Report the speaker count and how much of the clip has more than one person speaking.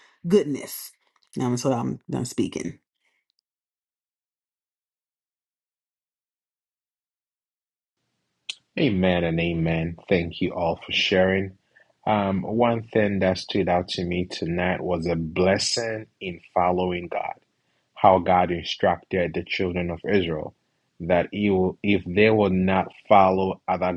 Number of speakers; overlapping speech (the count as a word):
two, no overlap